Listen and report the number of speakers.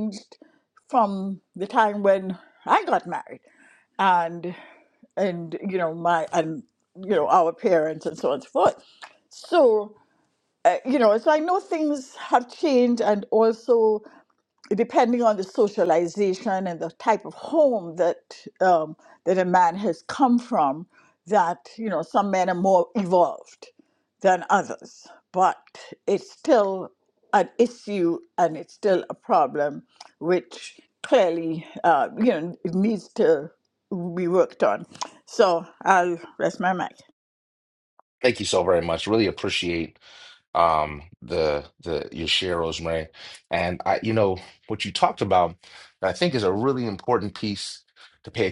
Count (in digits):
2